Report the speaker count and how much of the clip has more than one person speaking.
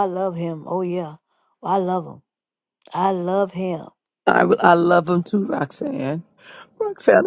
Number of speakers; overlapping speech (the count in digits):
2, no overlap